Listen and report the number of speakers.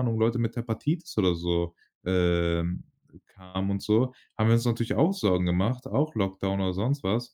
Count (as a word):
one